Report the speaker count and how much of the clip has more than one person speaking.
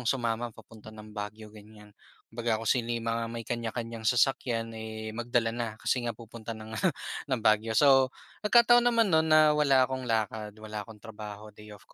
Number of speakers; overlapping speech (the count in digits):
1, no overlap